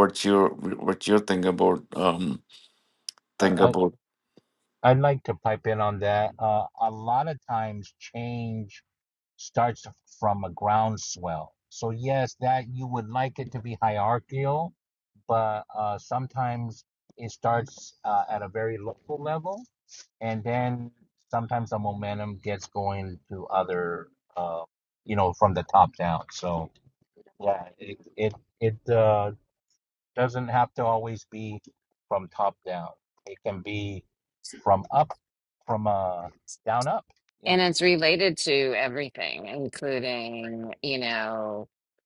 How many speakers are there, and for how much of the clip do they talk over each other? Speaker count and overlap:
three, about 1%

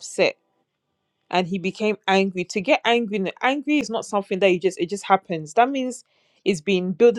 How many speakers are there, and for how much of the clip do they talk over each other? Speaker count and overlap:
one, no overlap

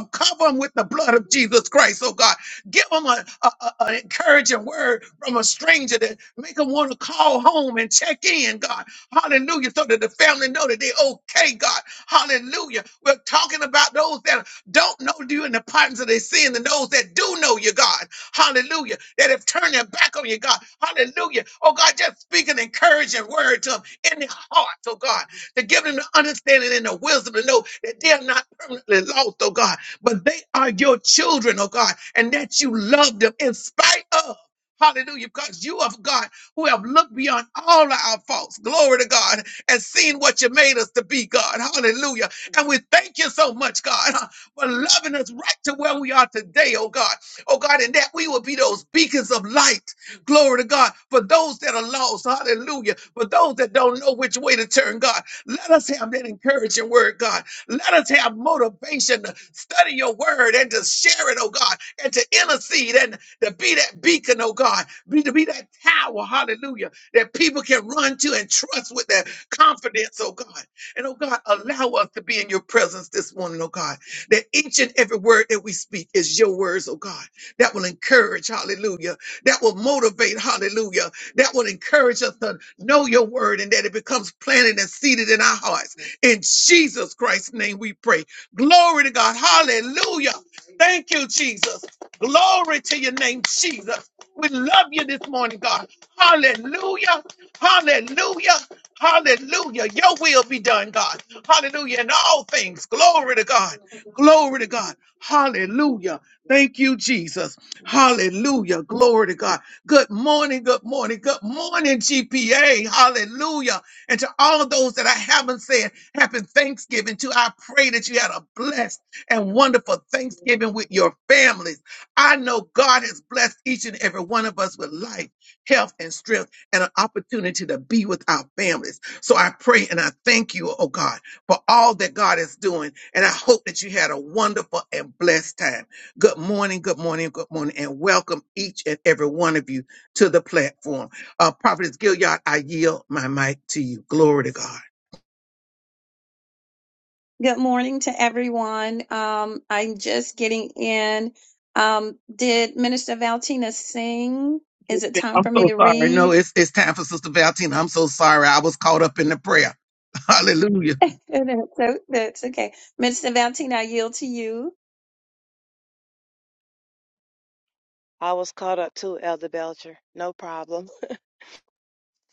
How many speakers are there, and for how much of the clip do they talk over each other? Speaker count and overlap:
three, about 1%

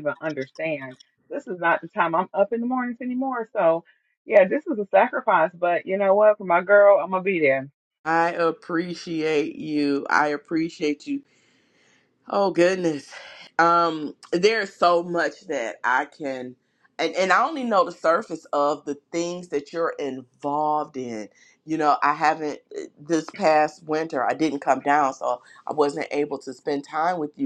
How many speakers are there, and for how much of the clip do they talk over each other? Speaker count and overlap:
two, no overlap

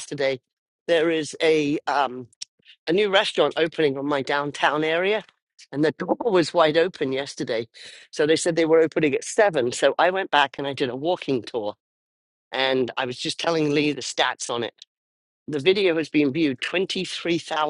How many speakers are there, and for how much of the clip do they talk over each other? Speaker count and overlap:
one, no overlap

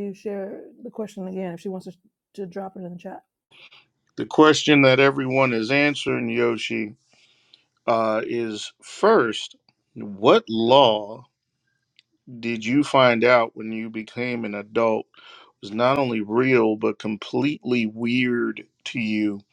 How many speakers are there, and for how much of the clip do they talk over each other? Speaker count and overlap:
two, no overlap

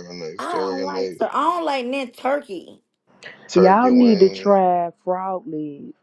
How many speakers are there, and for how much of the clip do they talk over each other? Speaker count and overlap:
three, about 30%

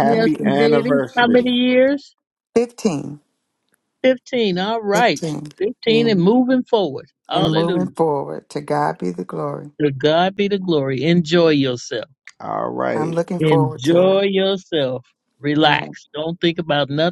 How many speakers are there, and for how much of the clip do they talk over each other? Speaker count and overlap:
three, about 24%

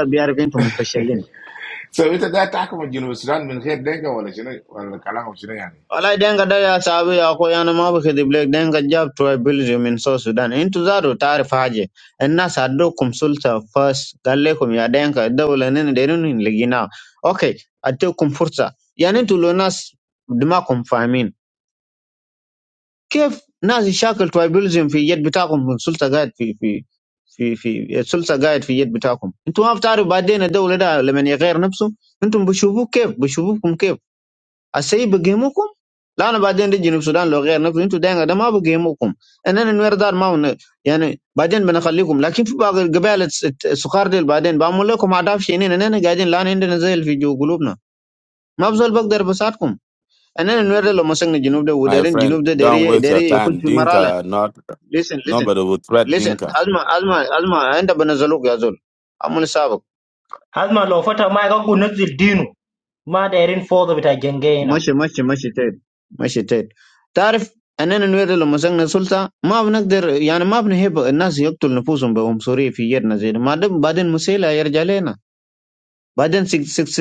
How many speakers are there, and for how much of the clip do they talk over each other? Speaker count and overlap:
four, about 4%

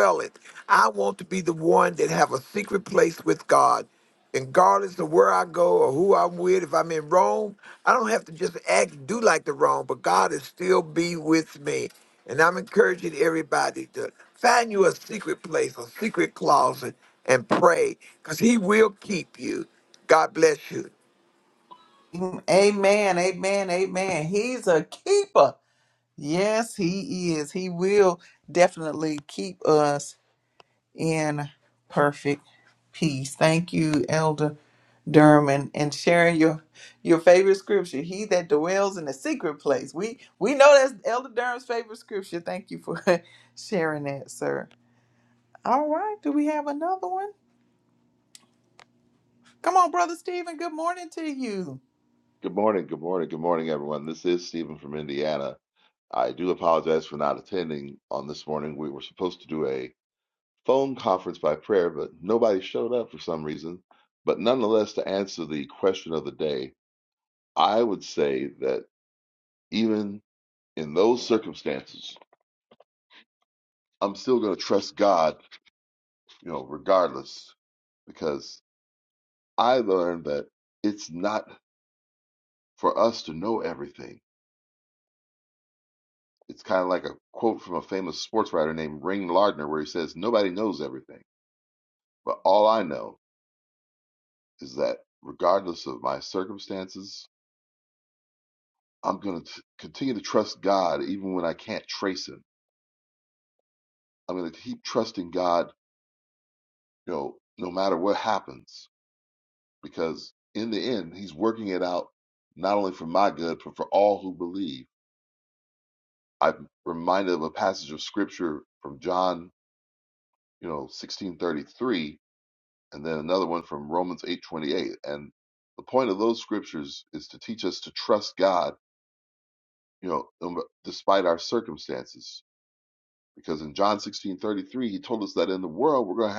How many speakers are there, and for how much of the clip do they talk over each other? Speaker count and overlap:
three, no overlap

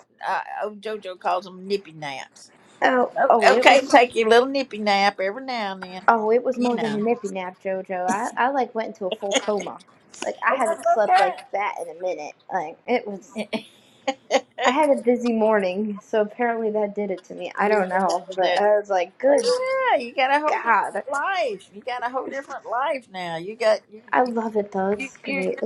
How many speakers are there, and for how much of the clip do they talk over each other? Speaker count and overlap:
two, about 19%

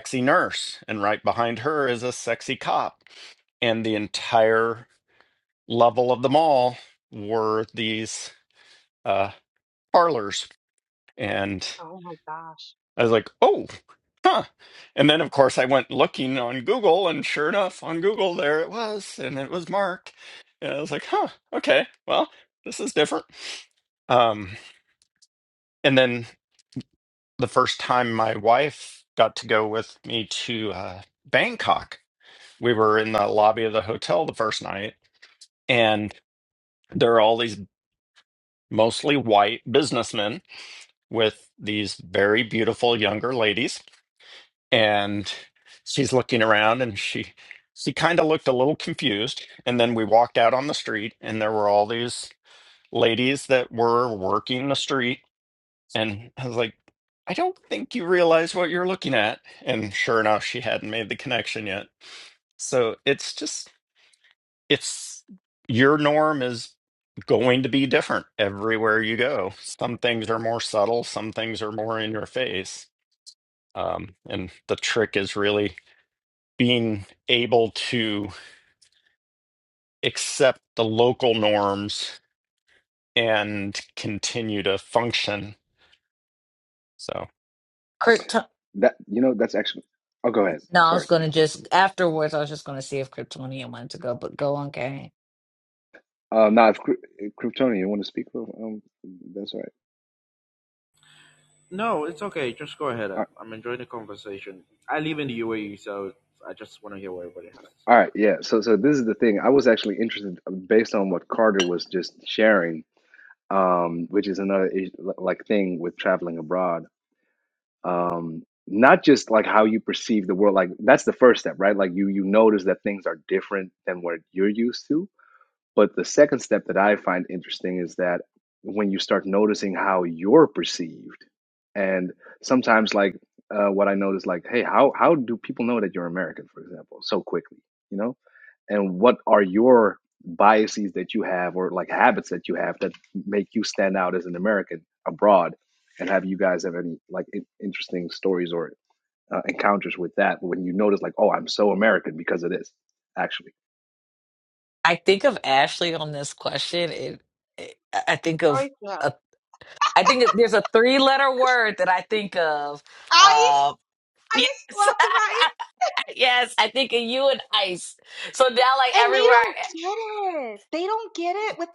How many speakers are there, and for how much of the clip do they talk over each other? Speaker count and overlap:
five, about 1%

